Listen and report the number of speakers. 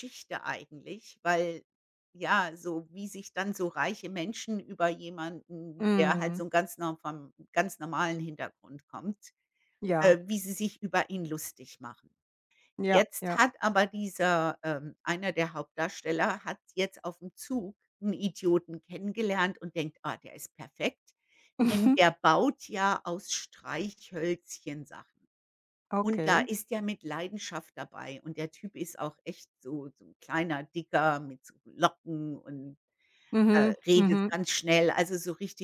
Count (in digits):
2